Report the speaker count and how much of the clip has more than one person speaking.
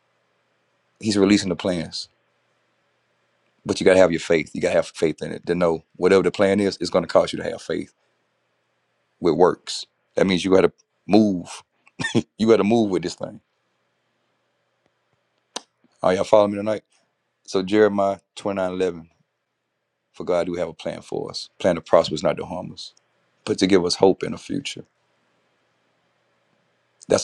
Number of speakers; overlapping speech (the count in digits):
1, no overlap